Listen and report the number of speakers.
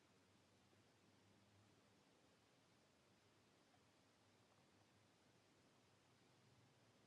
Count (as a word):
zero